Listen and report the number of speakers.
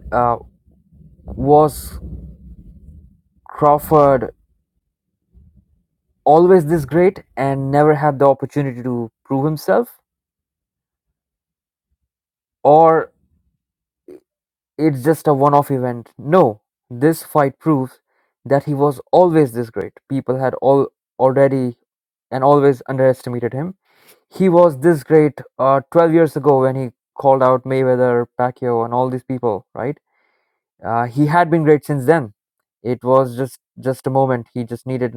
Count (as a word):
one